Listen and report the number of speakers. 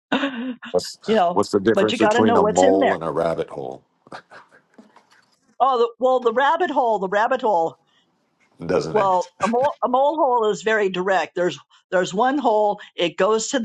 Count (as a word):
two